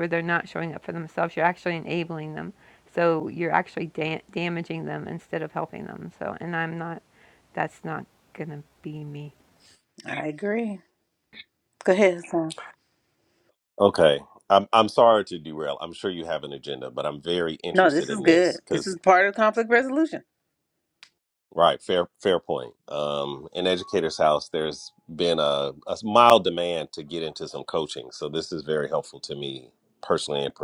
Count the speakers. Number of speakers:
3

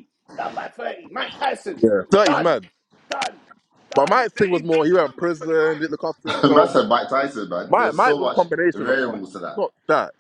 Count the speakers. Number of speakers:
3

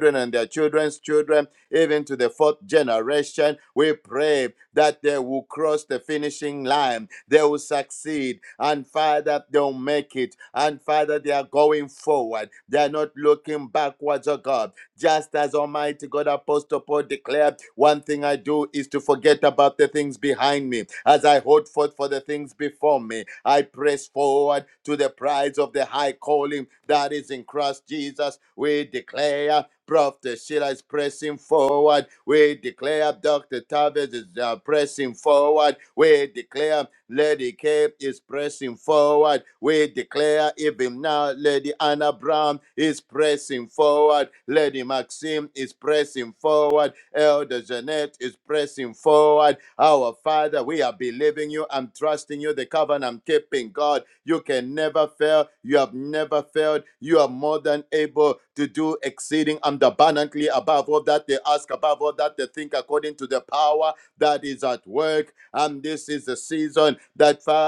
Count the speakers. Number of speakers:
1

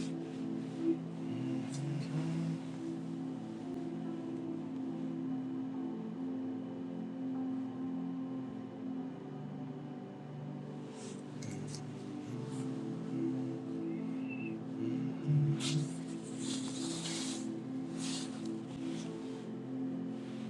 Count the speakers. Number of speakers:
0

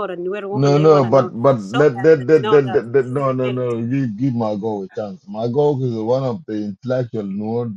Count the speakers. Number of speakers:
2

